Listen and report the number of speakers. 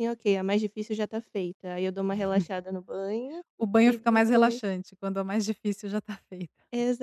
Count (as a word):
two